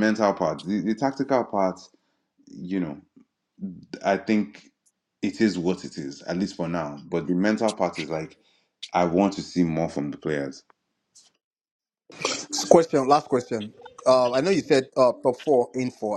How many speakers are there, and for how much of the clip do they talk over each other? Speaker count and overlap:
two, no overlap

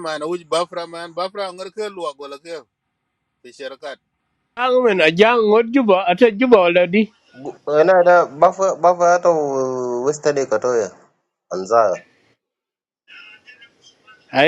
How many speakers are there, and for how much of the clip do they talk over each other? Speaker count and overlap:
three, no overlap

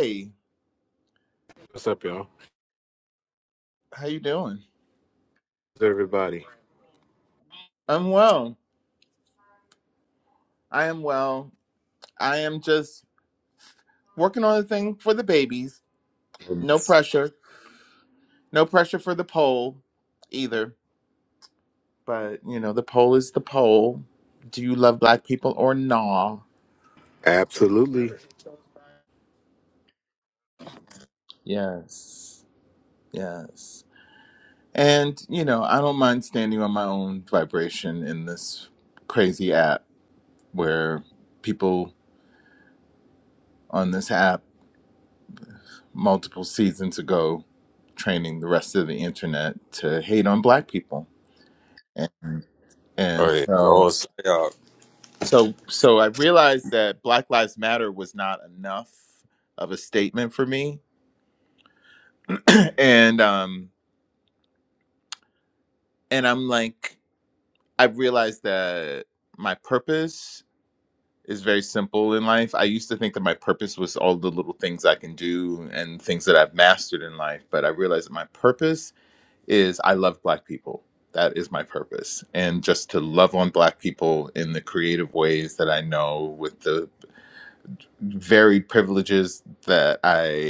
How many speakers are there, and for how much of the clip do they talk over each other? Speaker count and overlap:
three, about 1%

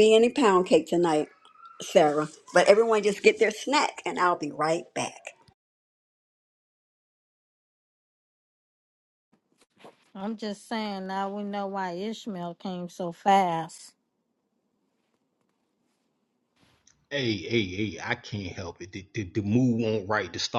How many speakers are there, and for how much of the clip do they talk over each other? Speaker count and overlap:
three, no overlap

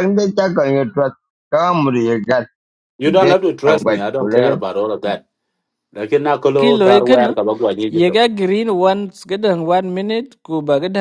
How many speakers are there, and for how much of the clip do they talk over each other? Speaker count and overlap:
three, about 23%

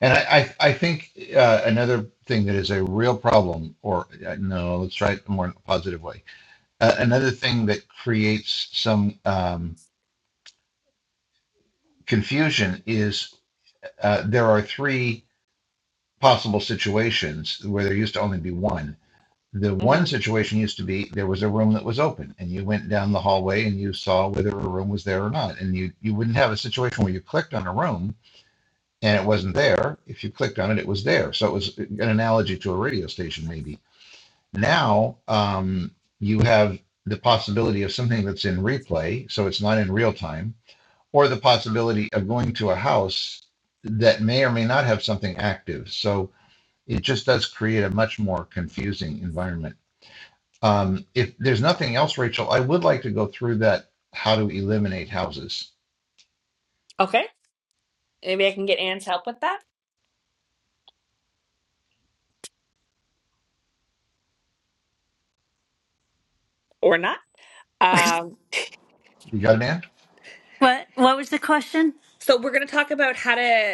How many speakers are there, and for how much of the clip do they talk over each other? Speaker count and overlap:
three, under 1%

